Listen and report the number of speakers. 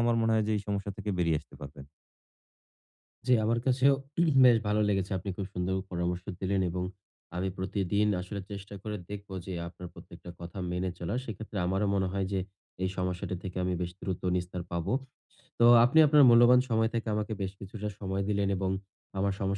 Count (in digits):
2